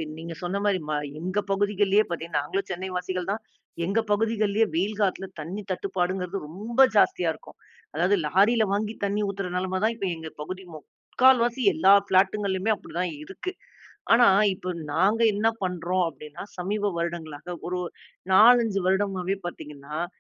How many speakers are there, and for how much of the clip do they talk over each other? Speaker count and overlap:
one, no overlap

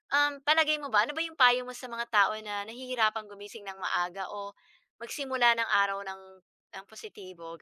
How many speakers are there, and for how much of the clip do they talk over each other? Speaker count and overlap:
one, no overlap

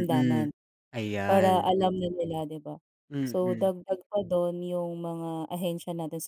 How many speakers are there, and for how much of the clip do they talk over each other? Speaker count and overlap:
two, about 19%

